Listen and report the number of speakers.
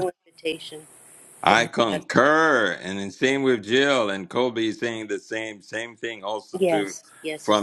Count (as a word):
two